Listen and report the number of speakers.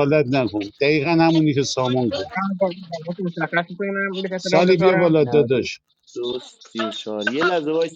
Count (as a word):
three